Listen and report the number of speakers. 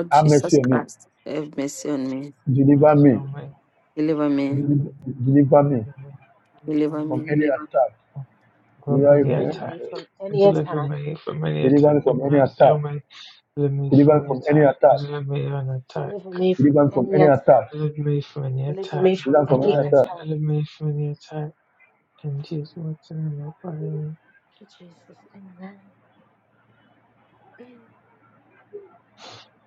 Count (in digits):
4